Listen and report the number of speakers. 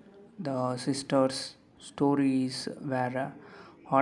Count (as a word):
one